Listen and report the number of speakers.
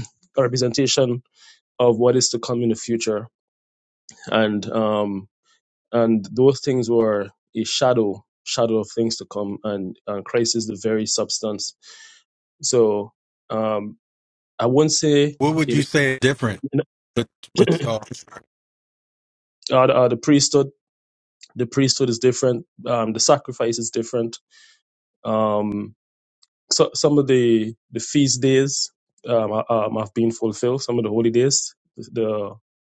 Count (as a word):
two